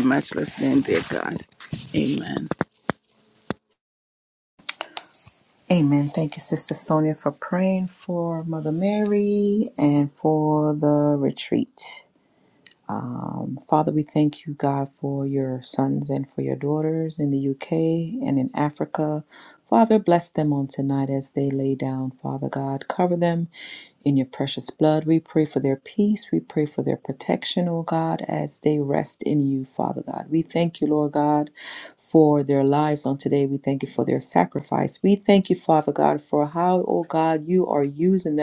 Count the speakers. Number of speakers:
2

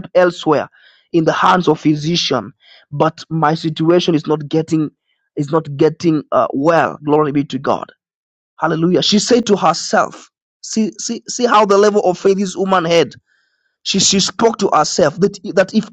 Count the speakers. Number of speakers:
1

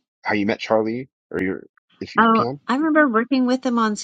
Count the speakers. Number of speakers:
2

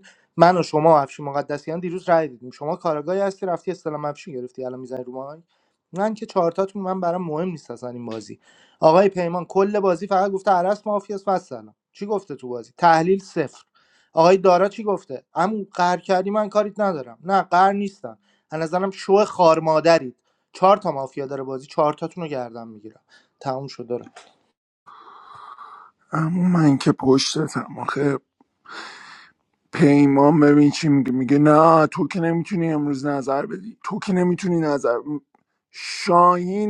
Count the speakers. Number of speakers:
2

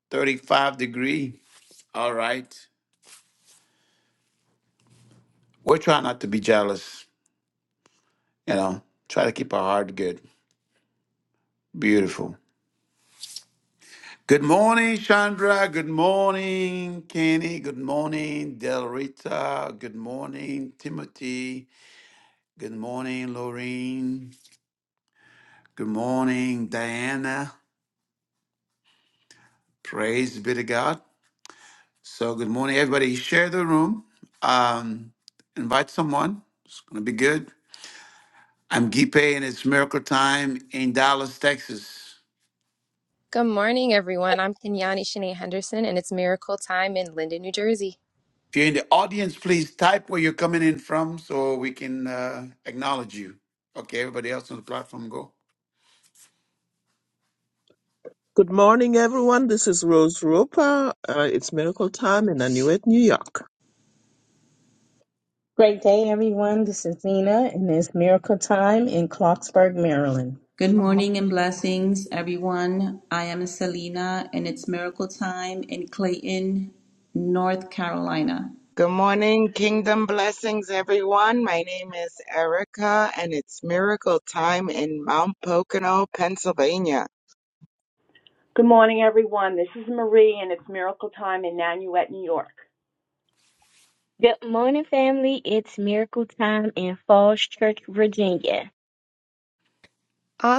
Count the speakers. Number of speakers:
8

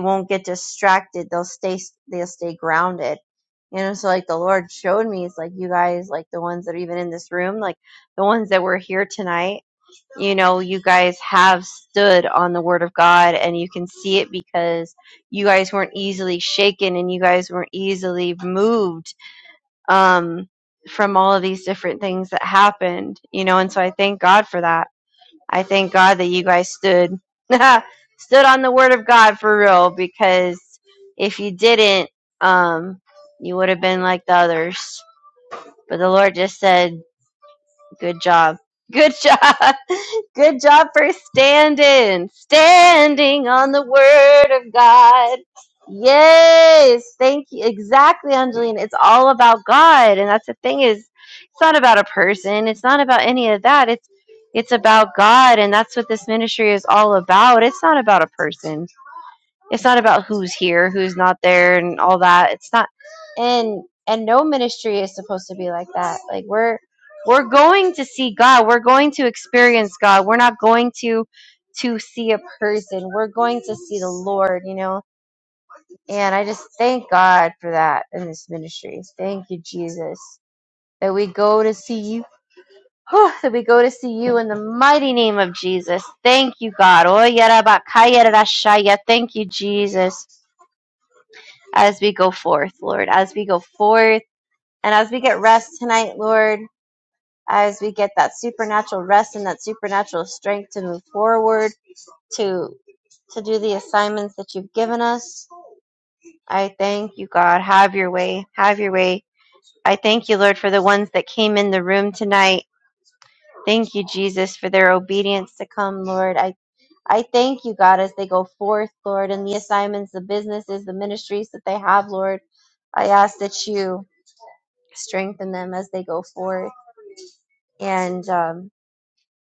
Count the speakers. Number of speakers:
1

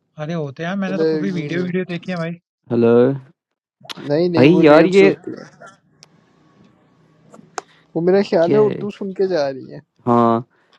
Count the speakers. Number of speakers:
3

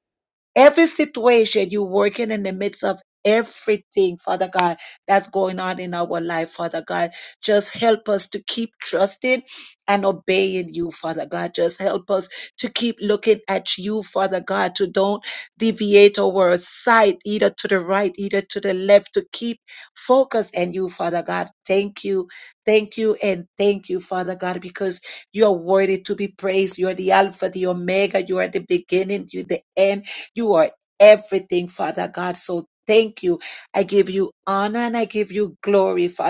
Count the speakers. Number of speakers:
1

